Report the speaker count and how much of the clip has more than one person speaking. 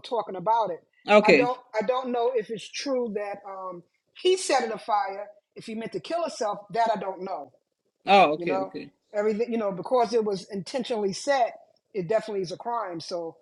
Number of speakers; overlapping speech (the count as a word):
two, about 4%